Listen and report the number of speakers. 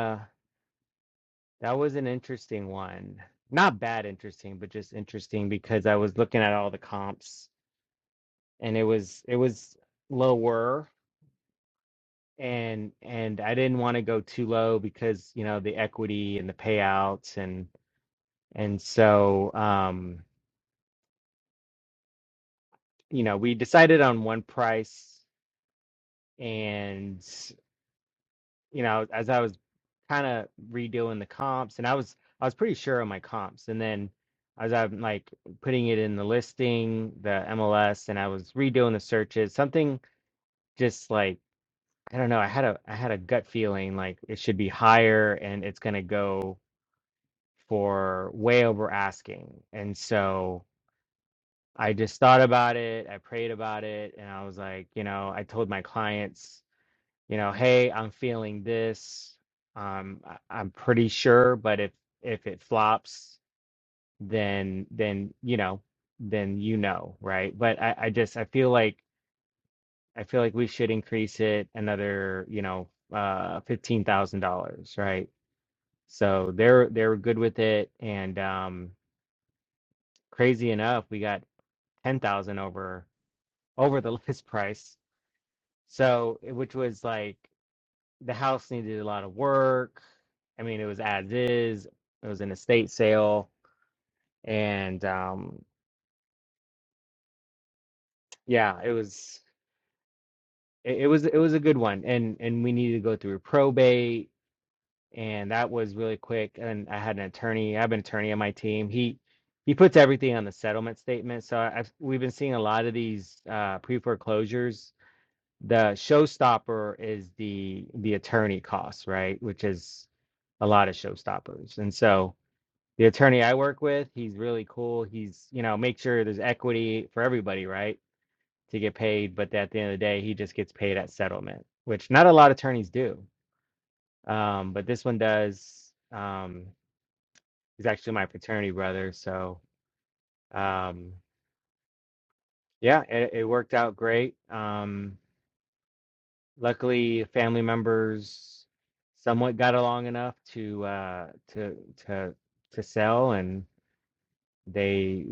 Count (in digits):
1